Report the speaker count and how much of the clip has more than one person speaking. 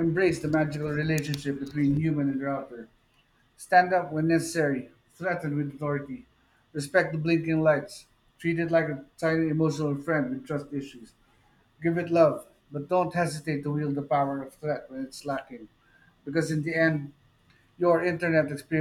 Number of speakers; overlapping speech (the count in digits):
1, no overlap